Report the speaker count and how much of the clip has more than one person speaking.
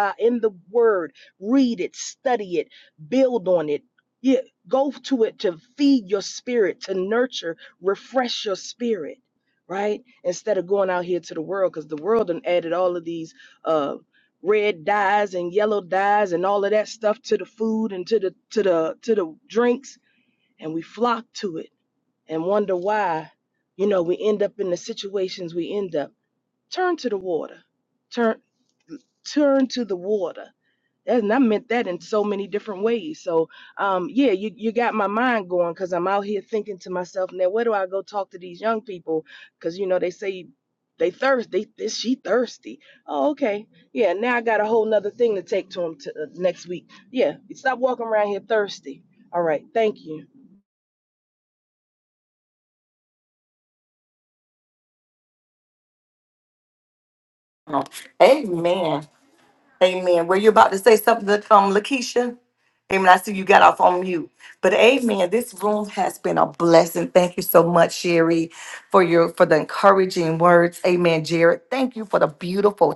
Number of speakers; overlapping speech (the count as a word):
two, no overlap